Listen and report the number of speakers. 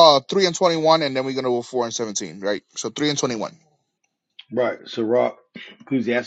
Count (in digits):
2